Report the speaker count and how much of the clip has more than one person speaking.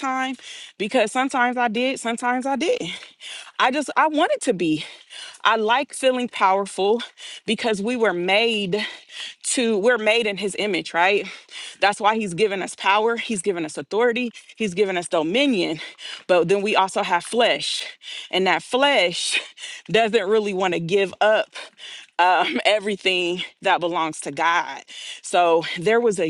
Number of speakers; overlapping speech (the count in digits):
1, no overlap